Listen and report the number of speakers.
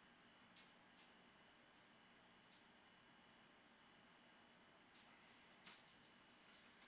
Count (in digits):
0